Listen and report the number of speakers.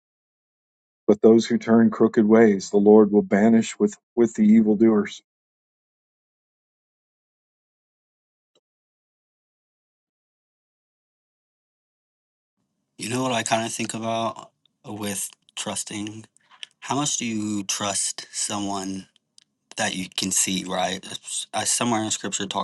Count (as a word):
two